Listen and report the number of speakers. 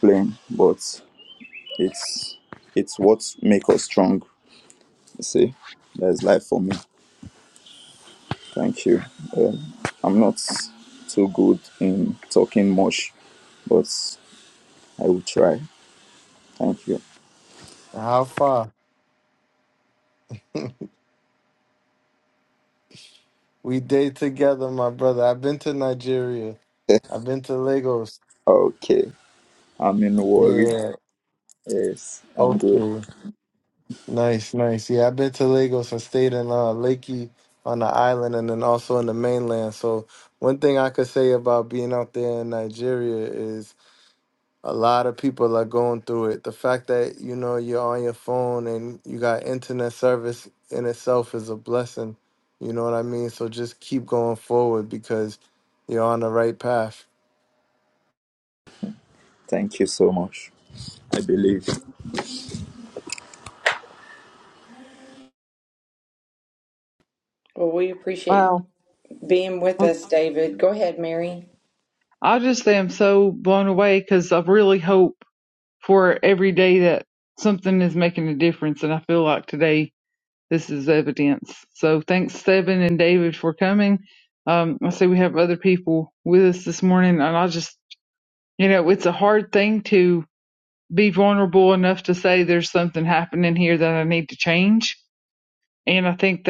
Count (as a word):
four